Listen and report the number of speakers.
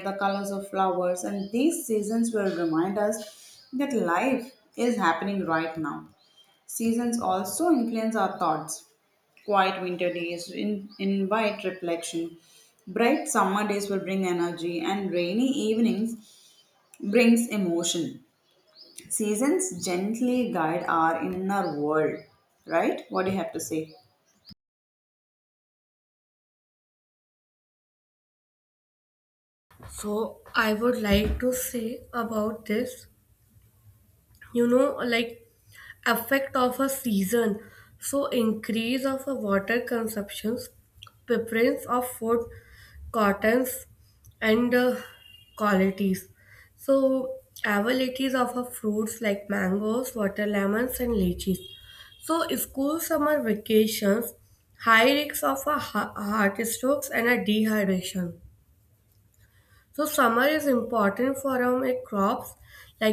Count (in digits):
2